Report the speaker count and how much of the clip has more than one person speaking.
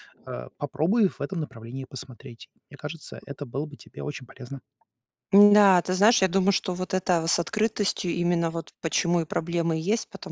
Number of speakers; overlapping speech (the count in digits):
2, no overlap